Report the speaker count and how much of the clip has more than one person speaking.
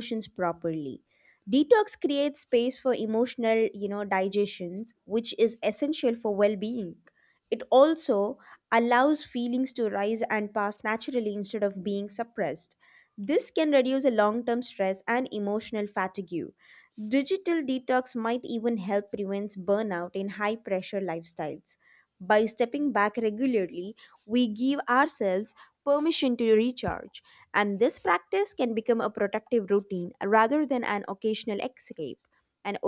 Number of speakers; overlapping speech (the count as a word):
one, no overlap